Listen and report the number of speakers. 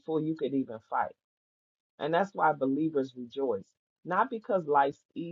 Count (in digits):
1